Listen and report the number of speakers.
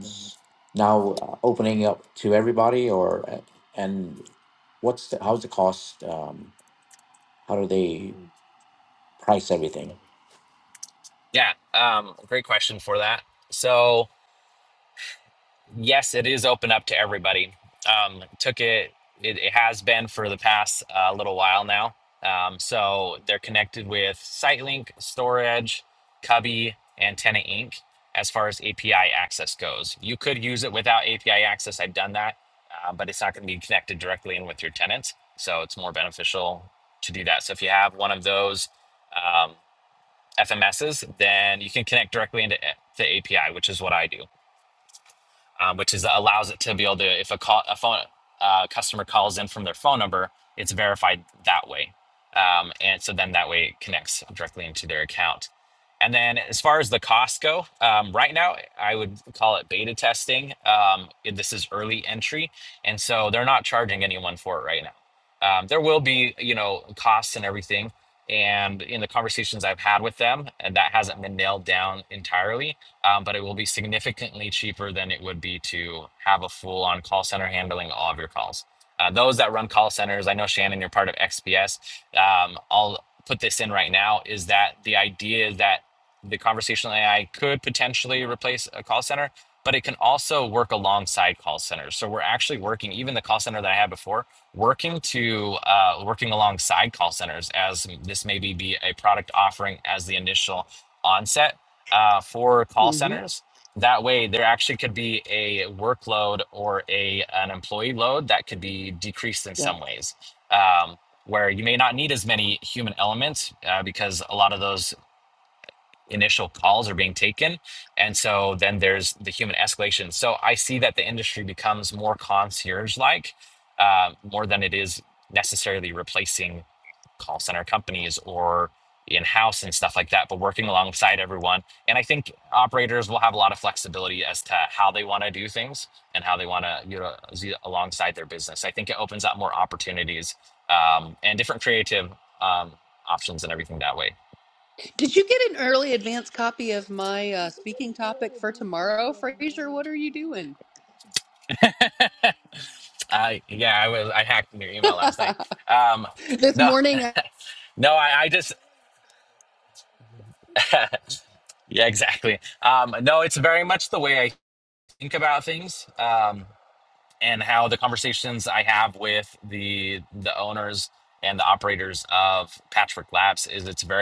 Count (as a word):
three